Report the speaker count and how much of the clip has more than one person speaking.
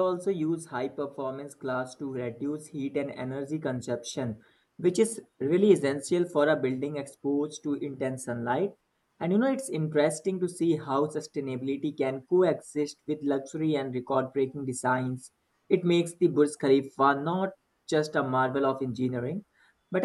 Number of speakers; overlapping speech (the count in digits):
1, no overlap